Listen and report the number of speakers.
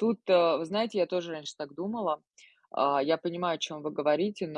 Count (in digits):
1